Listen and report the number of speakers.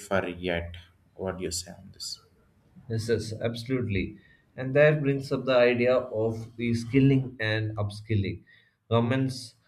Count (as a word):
two